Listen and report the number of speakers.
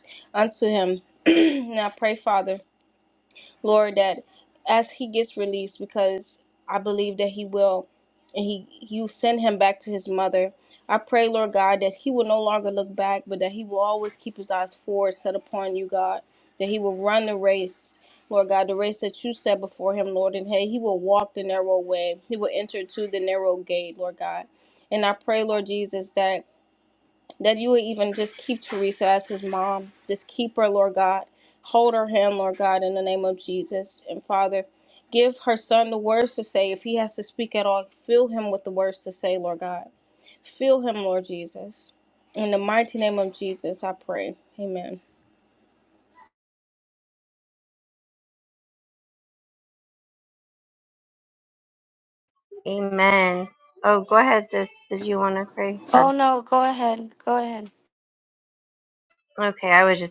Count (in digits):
3